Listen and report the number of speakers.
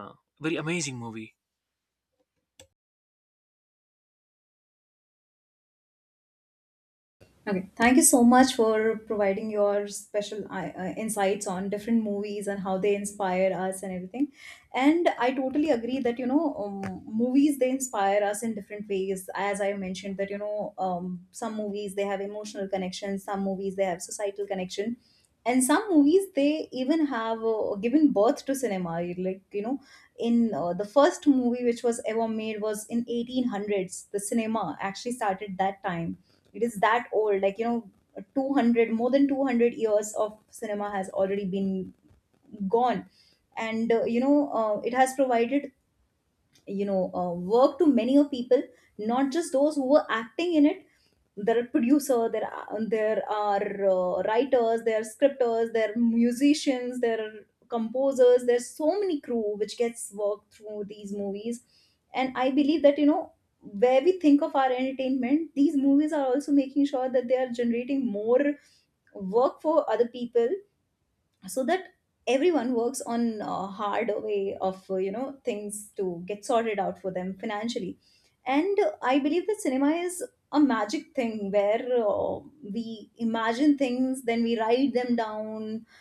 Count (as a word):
two